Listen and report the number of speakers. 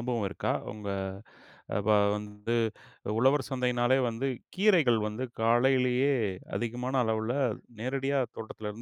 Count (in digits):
1